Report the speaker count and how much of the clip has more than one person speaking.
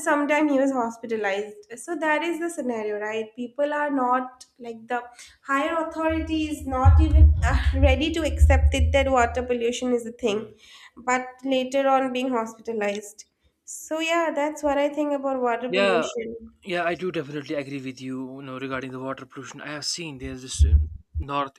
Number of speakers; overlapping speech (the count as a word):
two, about 3%